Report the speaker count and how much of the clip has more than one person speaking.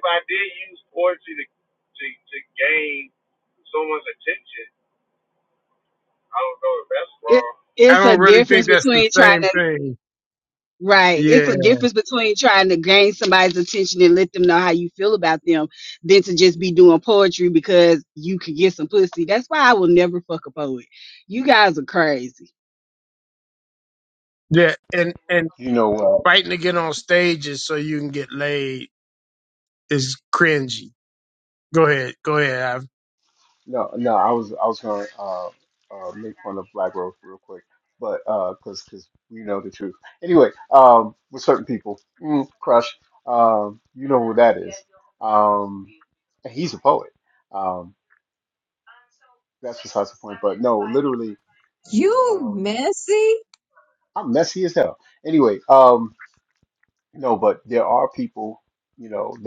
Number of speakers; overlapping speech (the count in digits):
5, about 4%